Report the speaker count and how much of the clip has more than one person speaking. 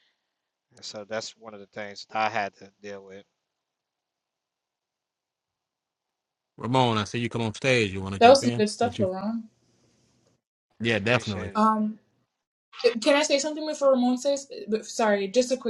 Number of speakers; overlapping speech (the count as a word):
three, about 10%